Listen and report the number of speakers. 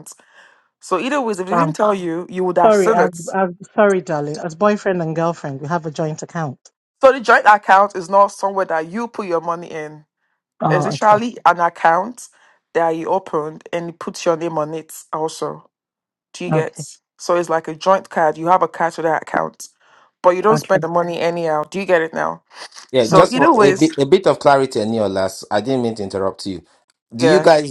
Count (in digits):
3